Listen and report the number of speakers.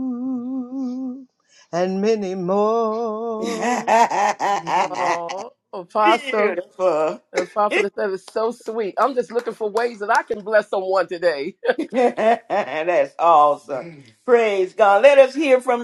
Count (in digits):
3